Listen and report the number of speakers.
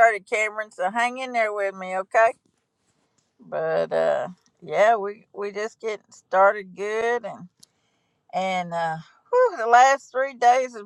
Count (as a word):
one